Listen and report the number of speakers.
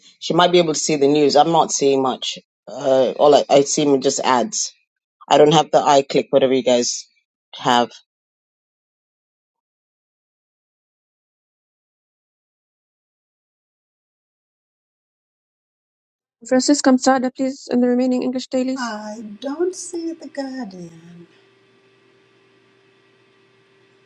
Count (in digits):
3